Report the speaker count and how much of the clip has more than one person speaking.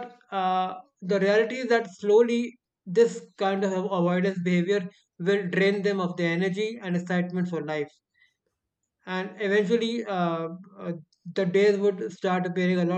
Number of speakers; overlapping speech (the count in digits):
1, no overlap